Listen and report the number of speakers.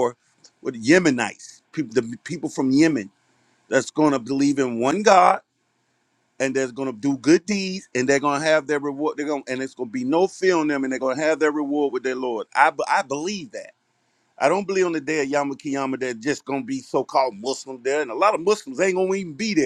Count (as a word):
one